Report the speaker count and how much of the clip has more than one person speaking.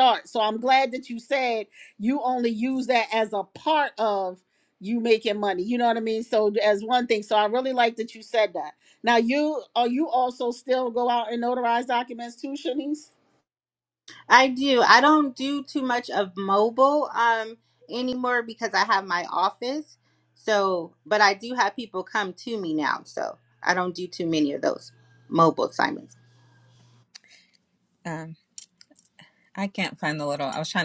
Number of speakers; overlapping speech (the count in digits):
3, no overlap